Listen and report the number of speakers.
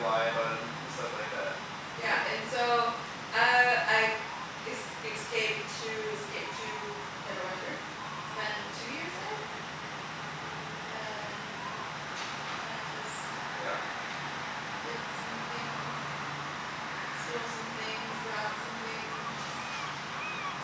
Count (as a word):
two